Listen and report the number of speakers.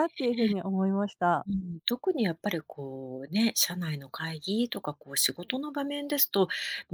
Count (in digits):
2